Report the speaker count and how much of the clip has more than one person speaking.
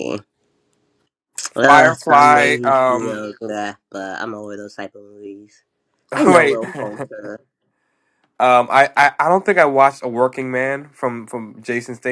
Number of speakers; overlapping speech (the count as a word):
two, about 16%